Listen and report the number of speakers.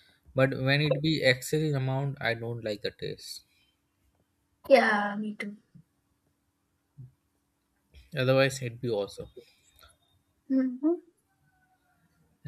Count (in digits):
2